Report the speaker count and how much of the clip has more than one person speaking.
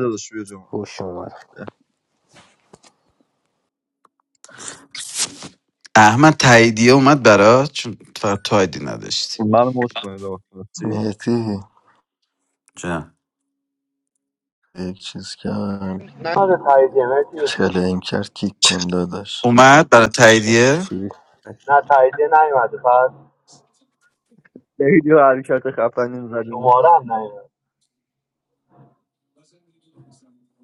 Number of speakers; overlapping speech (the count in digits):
5, about 3%